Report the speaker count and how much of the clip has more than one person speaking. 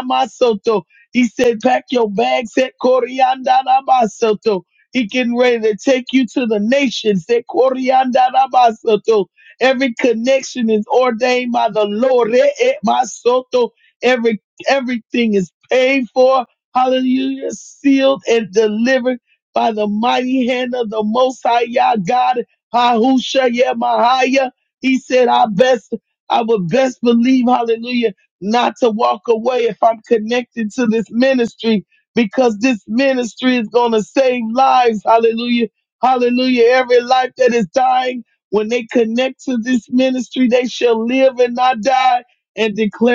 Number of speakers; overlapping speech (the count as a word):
one, no overlap